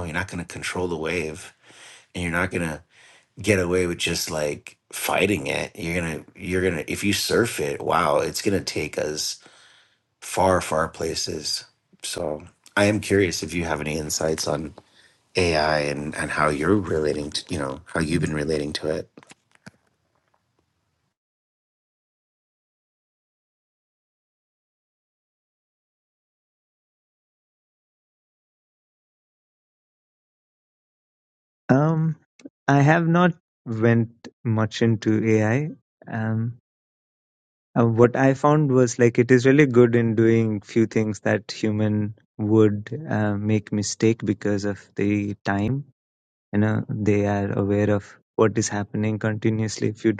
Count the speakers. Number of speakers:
2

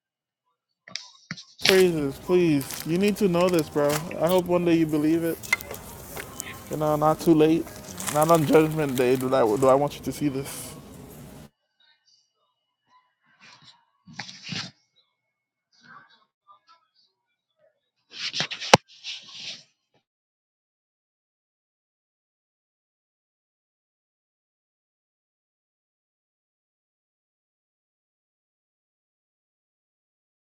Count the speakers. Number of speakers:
1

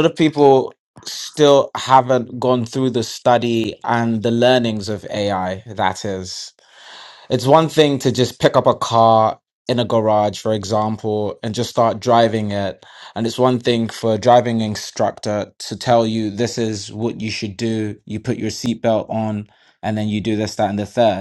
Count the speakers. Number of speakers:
1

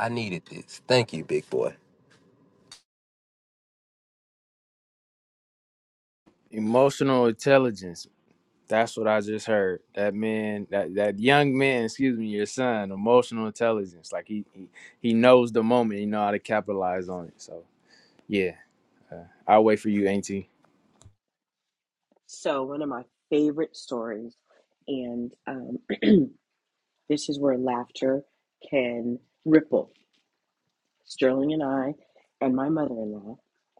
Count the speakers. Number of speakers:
3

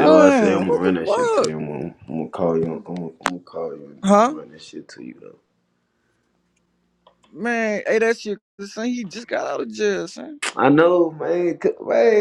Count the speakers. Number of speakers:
2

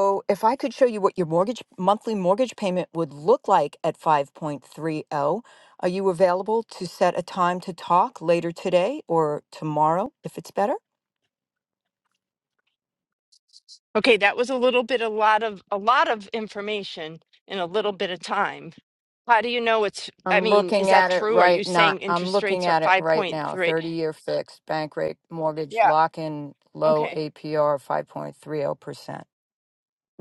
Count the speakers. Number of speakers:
2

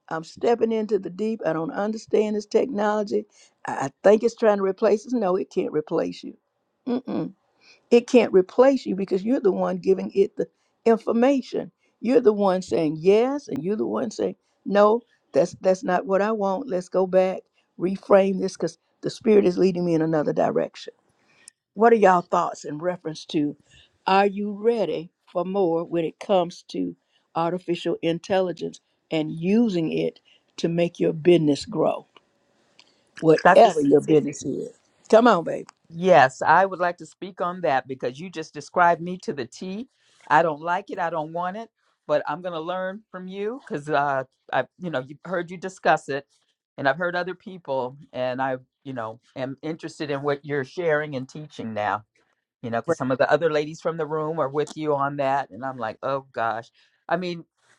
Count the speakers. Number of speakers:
2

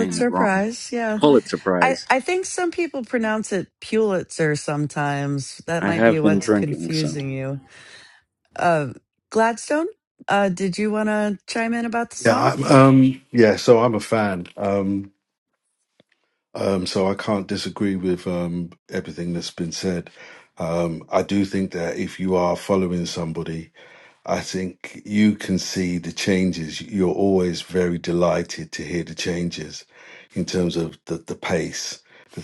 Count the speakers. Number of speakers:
3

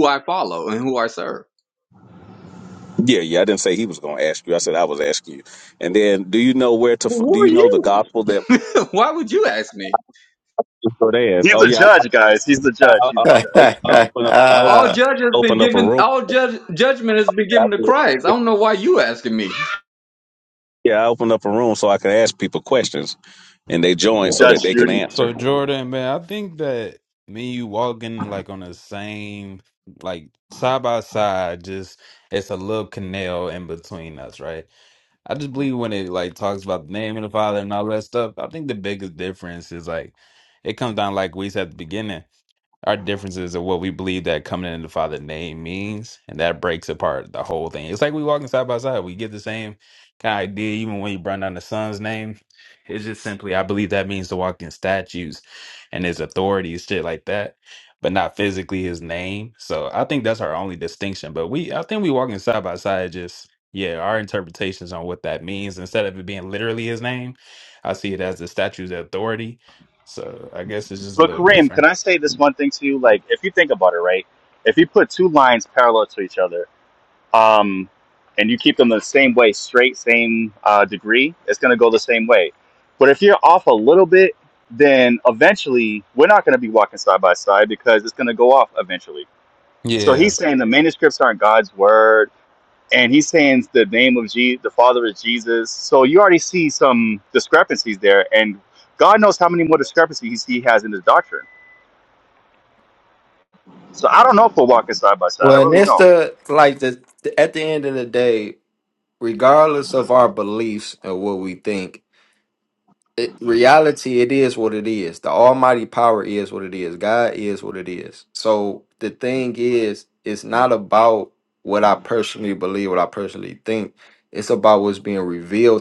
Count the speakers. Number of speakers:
5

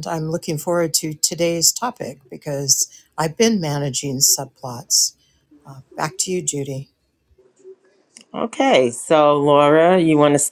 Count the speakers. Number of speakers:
2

